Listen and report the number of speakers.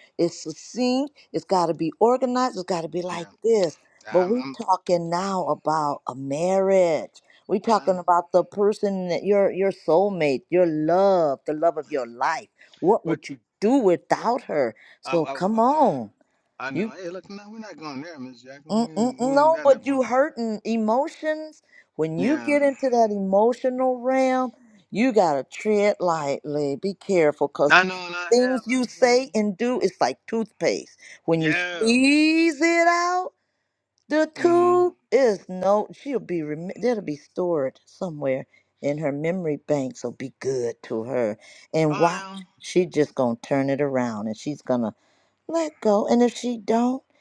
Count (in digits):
2